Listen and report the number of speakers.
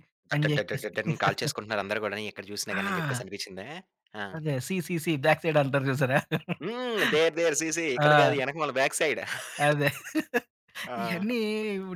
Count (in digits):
2